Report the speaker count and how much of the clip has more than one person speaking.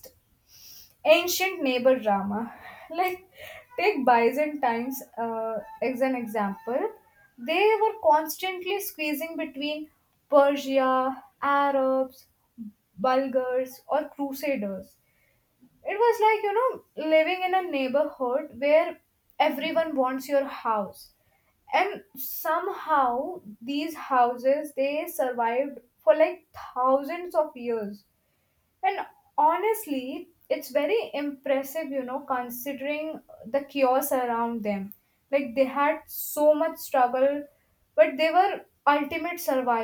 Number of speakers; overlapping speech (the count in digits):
1, no overlap